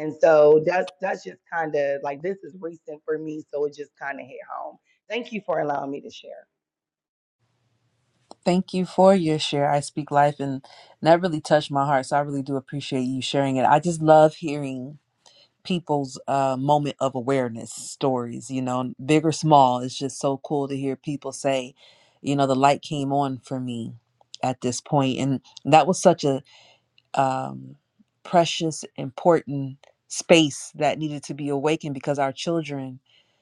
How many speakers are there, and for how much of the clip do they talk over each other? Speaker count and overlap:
two, no overlap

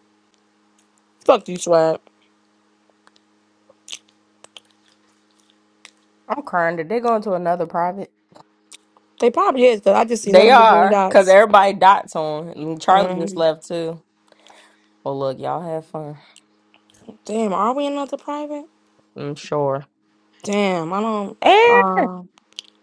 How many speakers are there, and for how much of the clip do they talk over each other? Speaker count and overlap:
two, about 8%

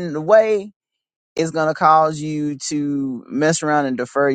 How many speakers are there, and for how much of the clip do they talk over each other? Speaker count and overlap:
one, no overlap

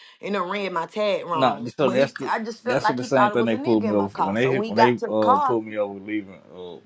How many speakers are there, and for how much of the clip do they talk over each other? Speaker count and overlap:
two, about 57%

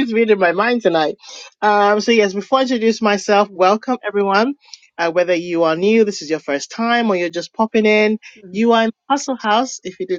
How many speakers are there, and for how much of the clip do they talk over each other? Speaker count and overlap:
one, no overlap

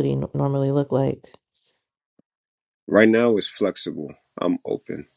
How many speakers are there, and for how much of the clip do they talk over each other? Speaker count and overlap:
two, no overlap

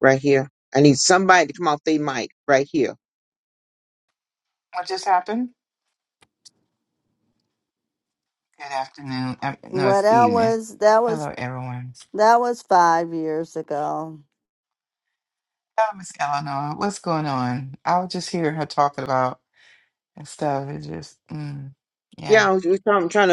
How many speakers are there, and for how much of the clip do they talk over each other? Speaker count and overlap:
three, about 5%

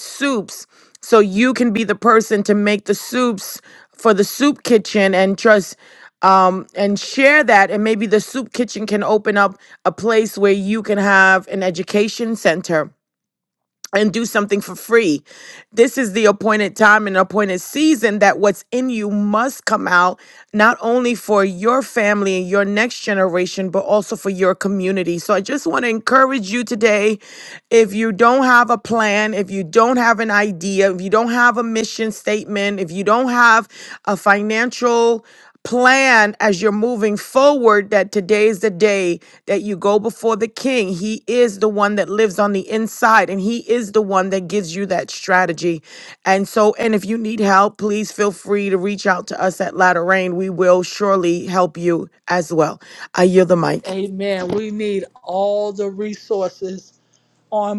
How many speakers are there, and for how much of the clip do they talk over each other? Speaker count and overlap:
two, under 1%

